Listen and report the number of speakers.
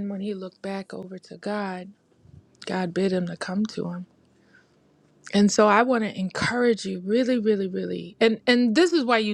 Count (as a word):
one